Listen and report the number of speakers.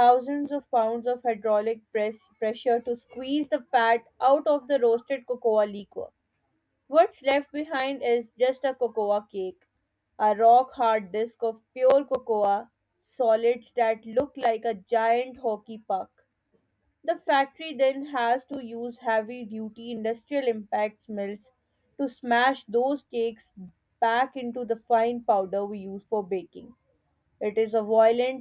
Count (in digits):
1